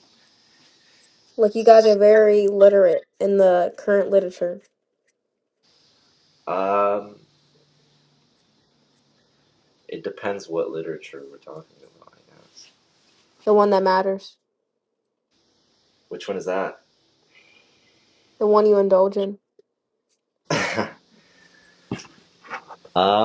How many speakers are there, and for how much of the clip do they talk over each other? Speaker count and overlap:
2, no overlap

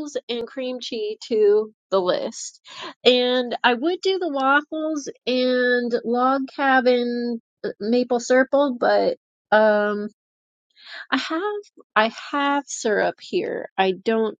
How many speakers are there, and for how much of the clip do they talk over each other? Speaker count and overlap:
1, no overlap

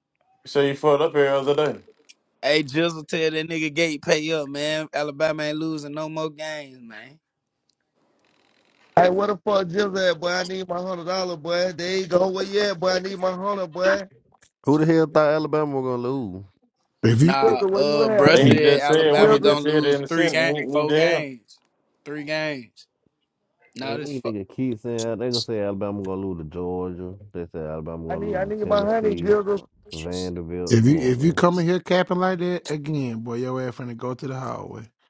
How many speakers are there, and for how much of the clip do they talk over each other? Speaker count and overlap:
5, about 18%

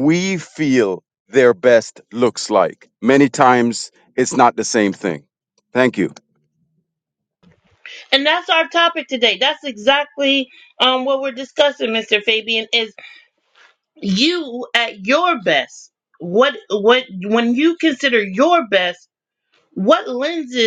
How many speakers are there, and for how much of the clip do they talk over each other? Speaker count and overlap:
2, no overlap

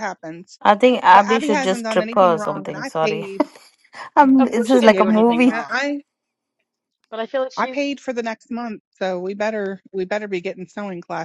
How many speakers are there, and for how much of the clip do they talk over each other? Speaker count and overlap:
3, about 33%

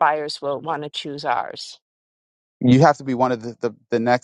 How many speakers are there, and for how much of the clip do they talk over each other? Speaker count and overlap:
2, no overlap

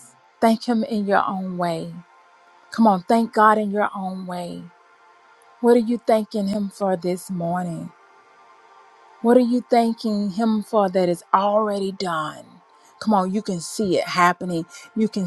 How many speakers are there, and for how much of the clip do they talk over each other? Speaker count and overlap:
1, no overlap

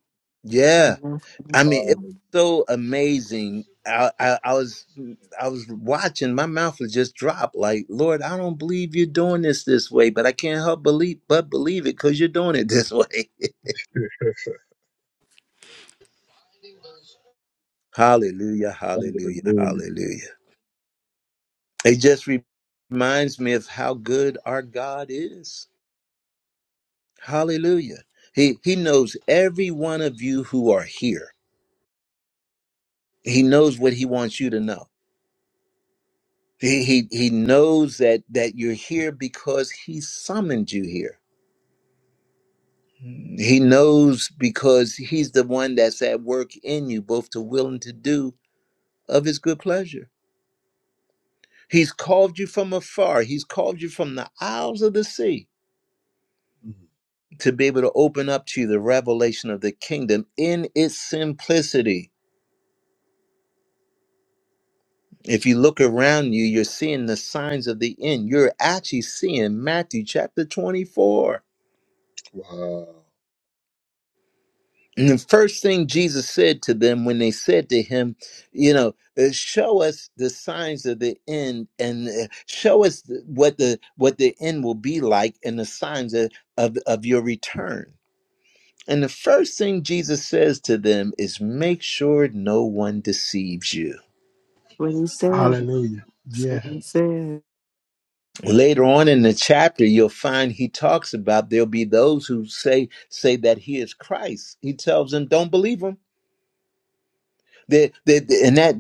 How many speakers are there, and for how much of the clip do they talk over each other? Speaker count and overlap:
4, about 2%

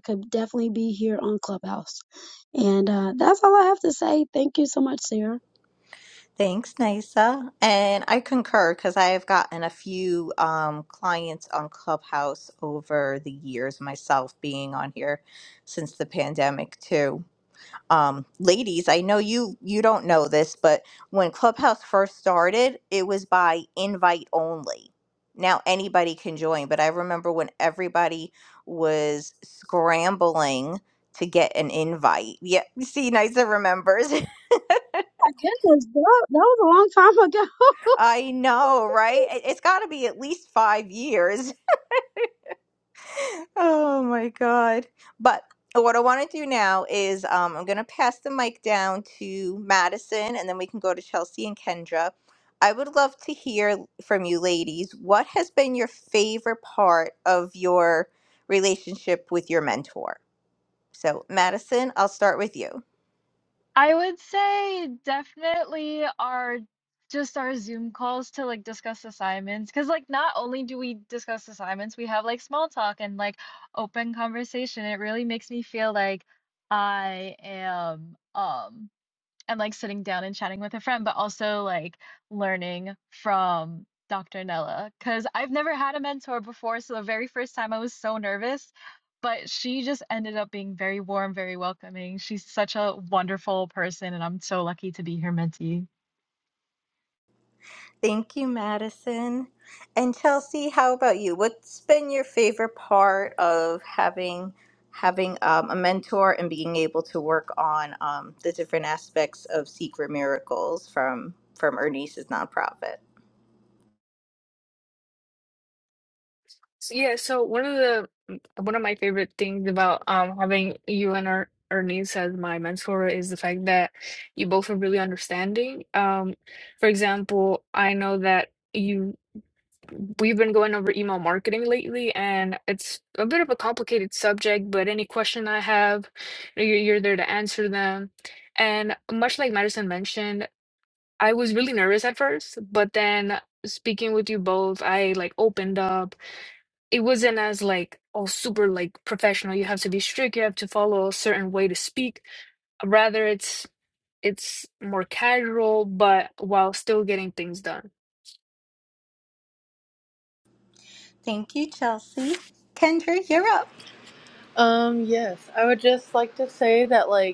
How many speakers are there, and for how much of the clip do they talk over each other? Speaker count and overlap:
5, no overlap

